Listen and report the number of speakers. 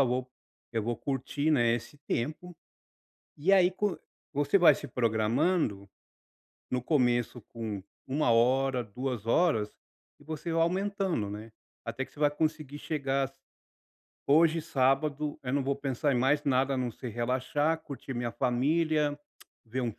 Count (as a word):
one